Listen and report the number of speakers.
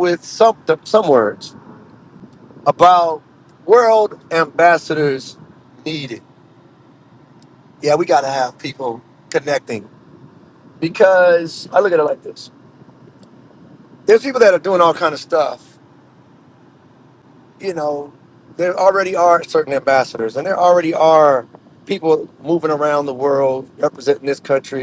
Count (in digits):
1